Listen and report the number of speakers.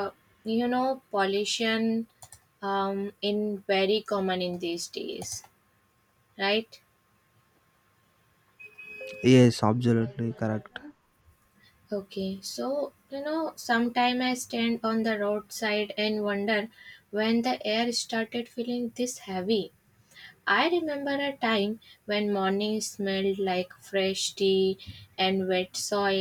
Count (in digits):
2